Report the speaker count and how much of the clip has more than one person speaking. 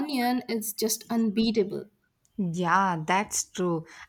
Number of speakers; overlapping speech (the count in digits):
2, no overlap